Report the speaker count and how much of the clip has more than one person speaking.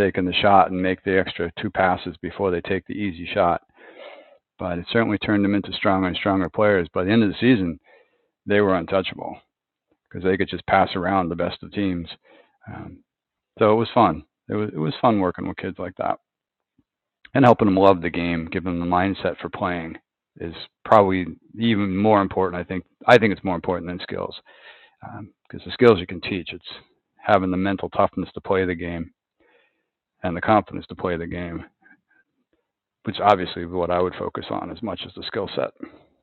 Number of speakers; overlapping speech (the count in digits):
1, no overlap